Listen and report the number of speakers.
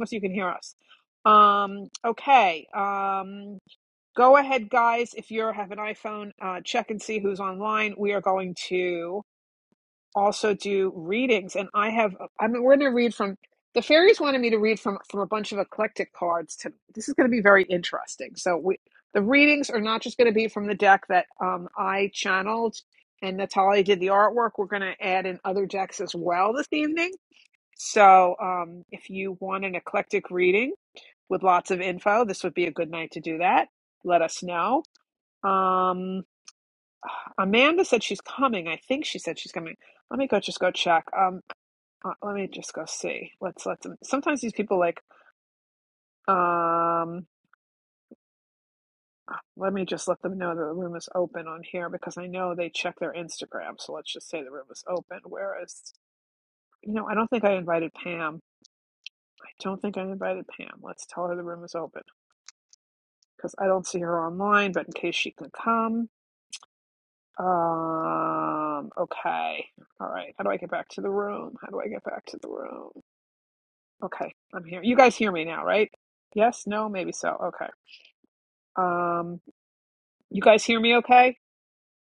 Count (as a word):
one